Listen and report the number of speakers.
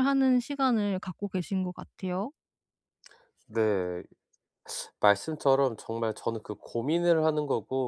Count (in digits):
2